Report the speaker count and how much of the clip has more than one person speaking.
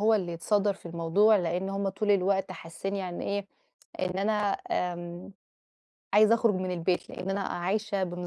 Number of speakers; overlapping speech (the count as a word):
one, no overlap